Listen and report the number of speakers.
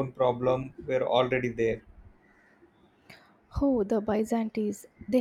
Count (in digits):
2